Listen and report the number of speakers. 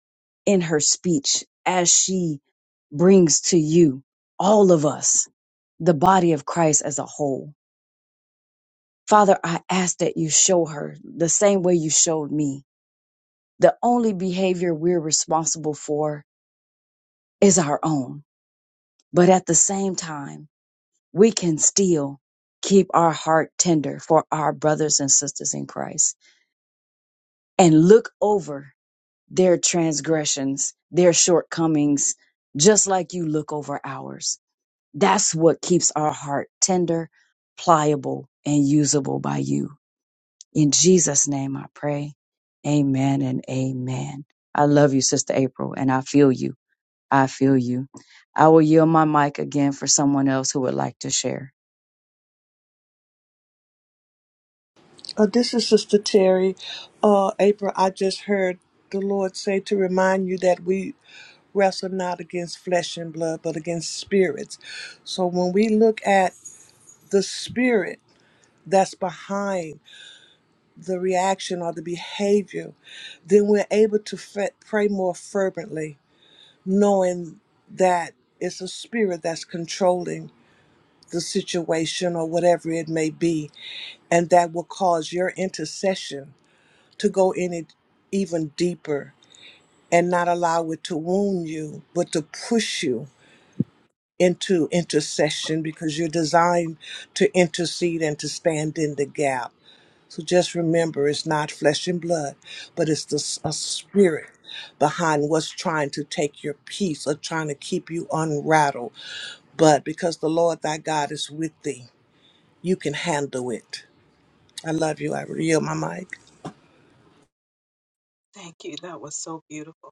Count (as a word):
three